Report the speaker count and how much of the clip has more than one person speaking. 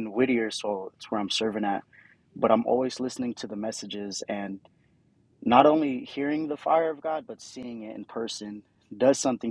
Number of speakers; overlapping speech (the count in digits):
1, no overlap